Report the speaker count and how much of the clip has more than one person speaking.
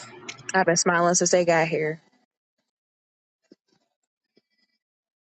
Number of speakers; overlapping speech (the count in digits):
1, no overlap